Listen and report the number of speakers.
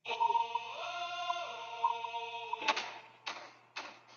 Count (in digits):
0